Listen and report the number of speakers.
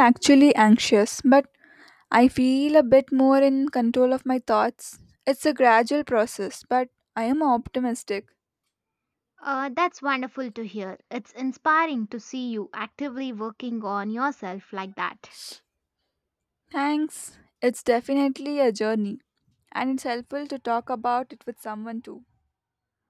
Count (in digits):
2